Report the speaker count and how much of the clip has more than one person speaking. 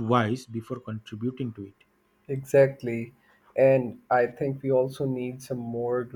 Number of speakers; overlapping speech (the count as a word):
two, no overlap